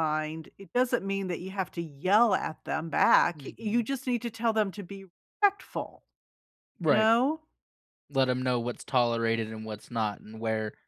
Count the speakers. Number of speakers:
two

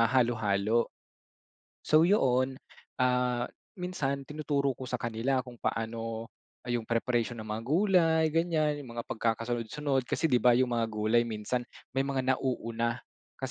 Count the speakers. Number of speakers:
one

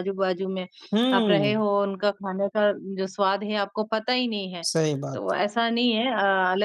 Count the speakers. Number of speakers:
two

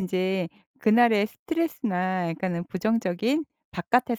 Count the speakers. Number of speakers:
one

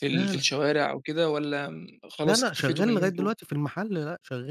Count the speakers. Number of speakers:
two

